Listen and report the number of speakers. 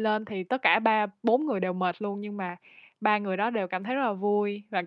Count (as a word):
one